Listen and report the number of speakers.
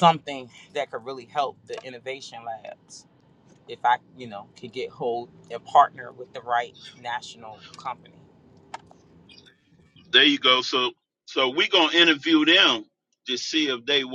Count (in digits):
2